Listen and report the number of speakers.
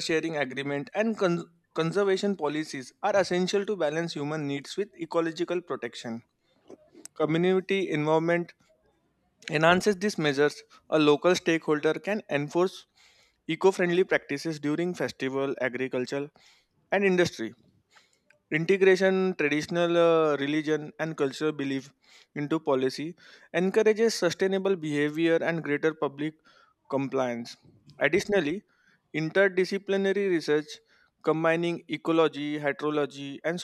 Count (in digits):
1